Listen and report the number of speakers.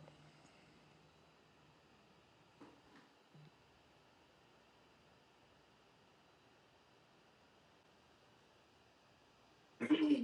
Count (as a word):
zero